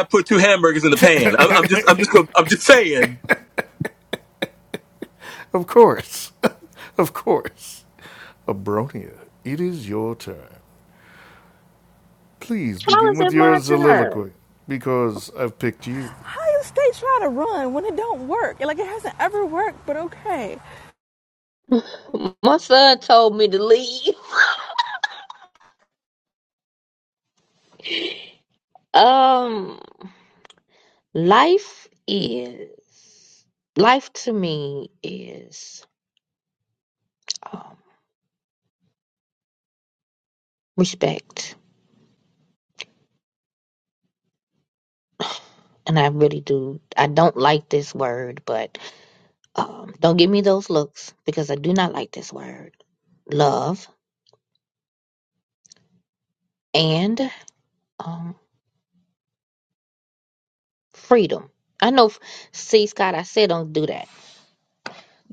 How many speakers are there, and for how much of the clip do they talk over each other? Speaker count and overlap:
4, about 2%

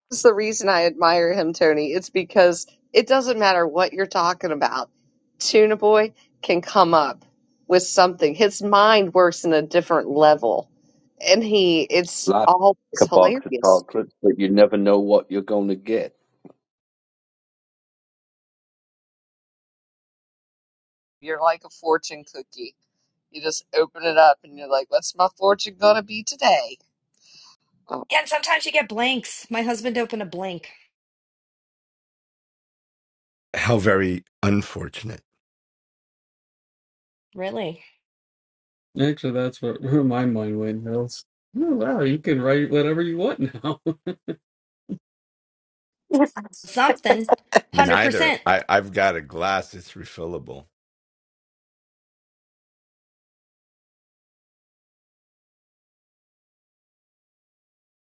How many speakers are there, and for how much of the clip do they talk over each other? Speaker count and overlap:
5, about 2%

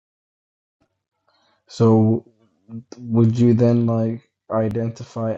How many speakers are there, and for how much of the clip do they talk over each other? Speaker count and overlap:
1, no overlap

